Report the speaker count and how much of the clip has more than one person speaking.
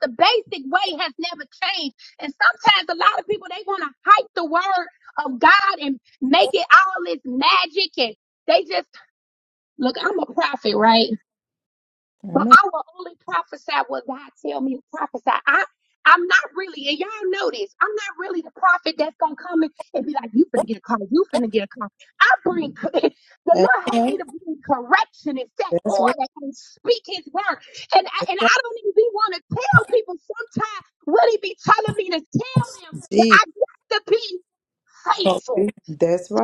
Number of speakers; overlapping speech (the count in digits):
2, about 4%